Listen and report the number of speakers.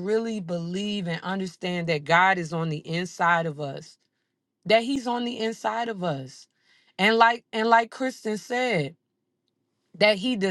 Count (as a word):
one